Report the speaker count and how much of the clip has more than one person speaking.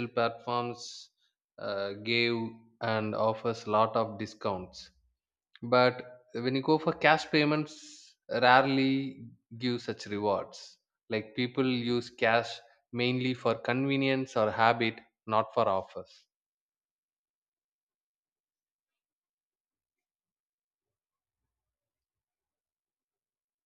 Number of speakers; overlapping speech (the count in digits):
1, no overlap